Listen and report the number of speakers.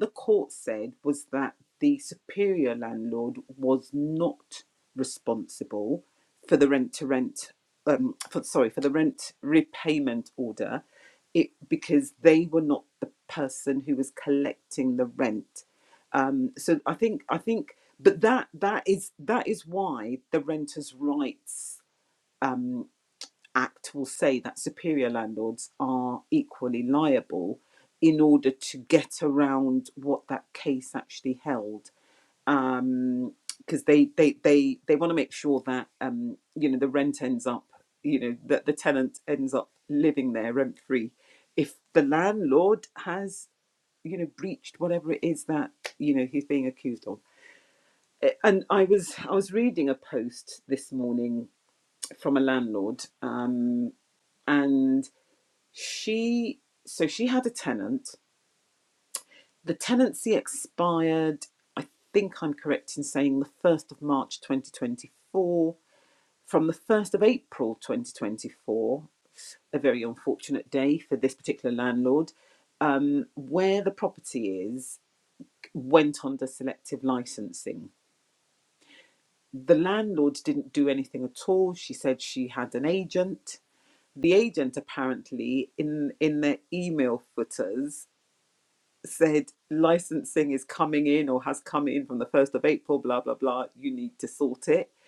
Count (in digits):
1